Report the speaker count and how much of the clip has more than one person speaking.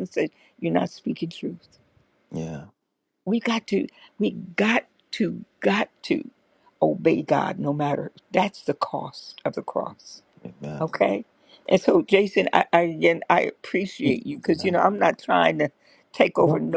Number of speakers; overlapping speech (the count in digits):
2, about 4%